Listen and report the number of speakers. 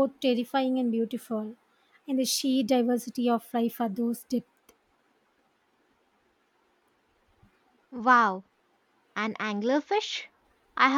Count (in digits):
2